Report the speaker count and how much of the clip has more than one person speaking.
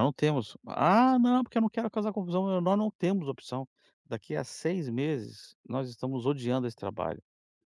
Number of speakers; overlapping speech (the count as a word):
one, no overlap